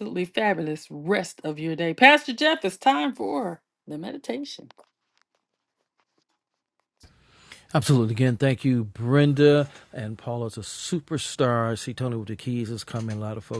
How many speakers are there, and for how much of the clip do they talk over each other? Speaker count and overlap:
two, no overlap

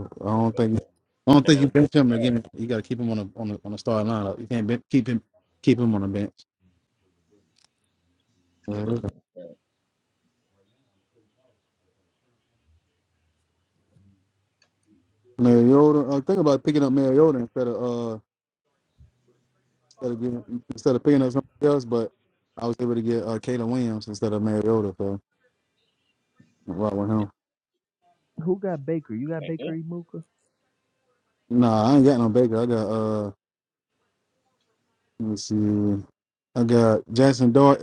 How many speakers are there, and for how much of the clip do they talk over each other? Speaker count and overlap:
three, about 3%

